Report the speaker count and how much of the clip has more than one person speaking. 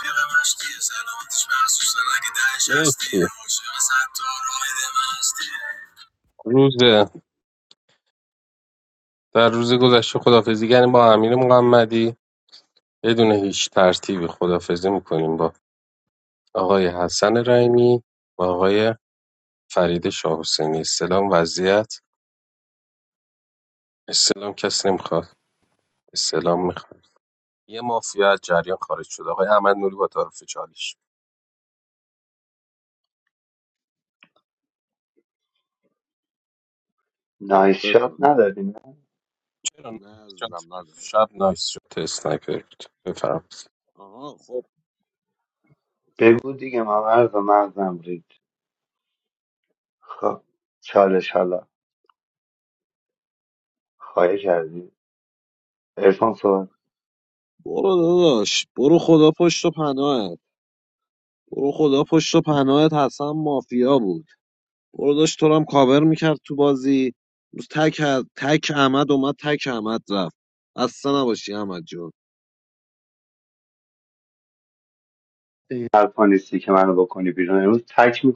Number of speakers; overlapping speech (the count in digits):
4, about 1%